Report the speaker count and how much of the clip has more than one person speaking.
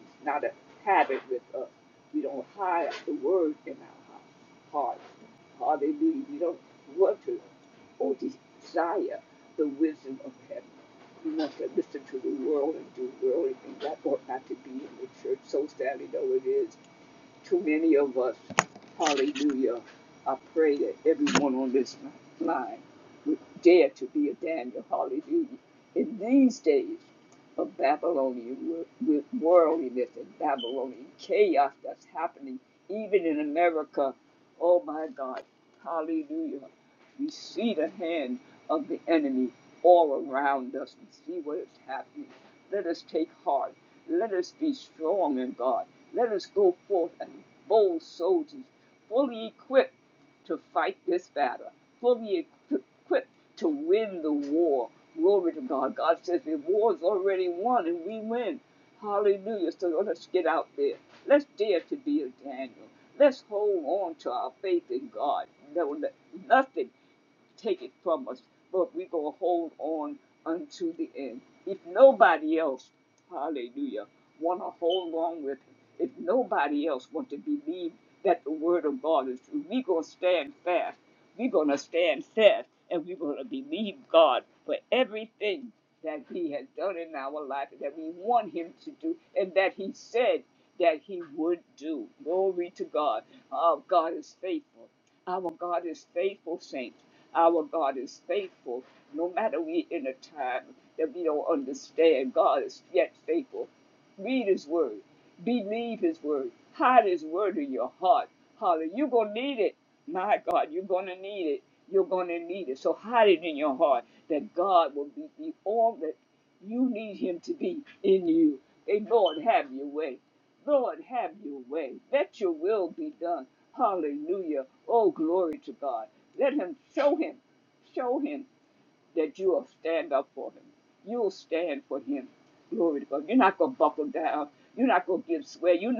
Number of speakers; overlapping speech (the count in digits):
1, no overlap